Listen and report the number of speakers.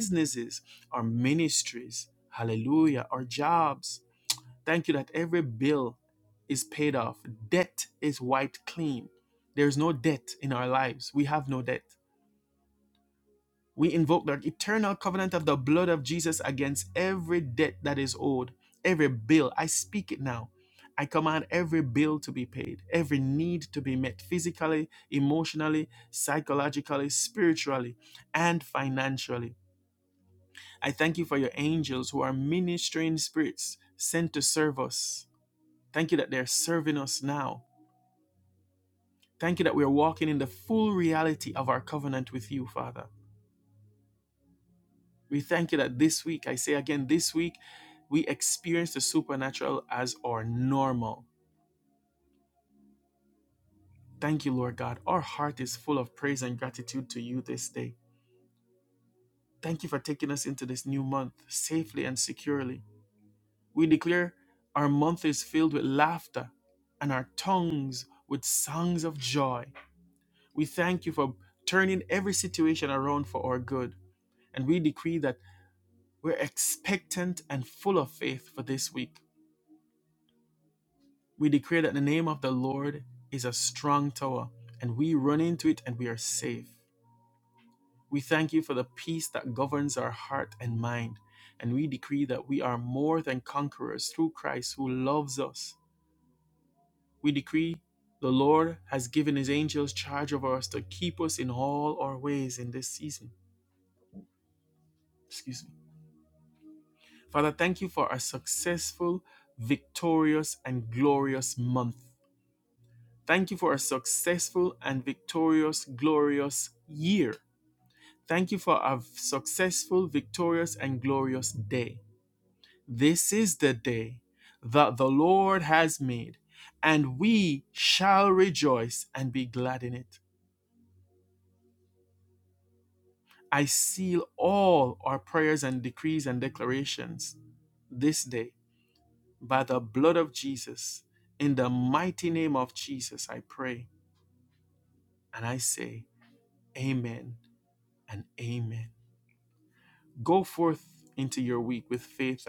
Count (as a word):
one